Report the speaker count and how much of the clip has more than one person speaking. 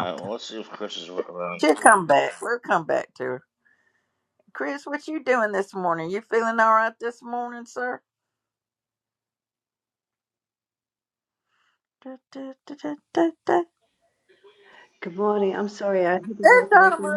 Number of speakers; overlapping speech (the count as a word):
three, about 6%